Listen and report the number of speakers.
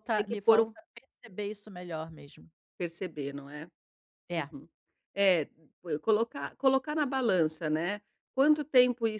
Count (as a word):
two